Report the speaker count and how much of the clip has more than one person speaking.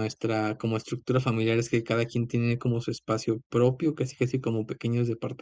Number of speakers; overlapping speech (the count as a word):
one, no overlap